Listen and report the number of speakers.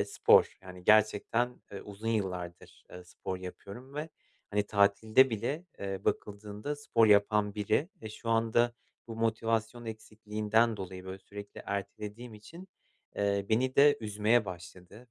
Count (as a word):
one